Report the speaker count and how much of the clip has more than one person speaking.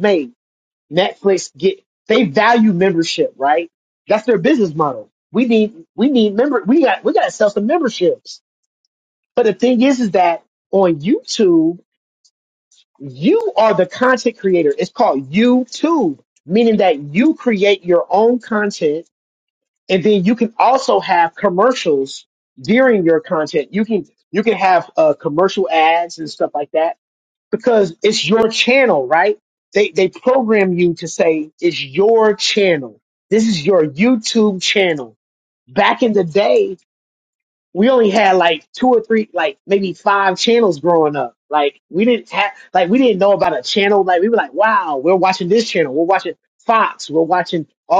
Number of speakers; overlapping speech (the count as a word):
one, no overlap